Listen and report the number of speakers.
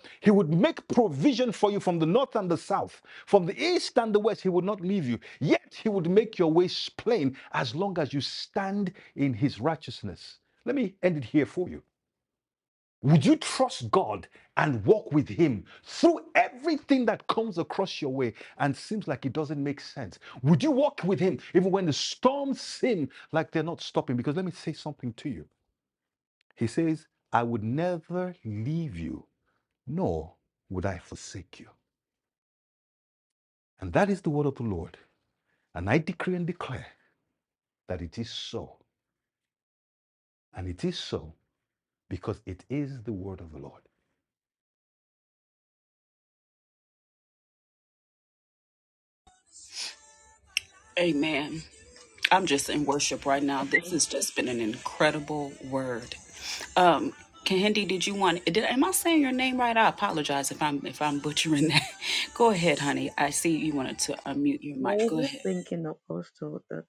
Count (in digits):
3